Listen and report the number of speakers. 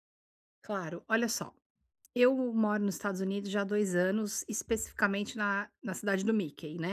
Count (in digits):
1